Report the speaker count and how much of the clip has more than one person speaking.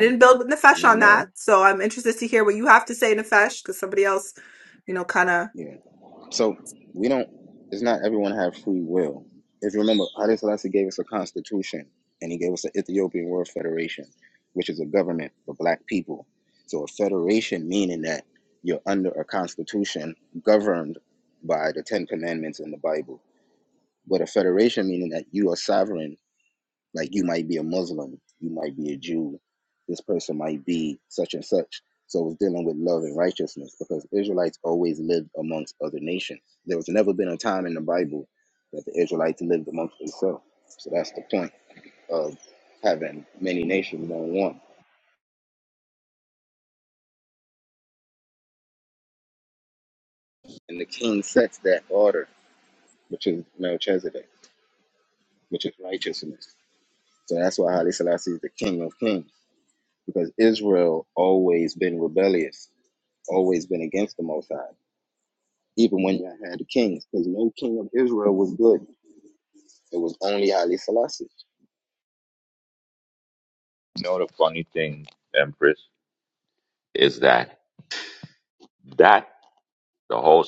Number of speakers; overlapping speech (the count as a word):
three, about 1%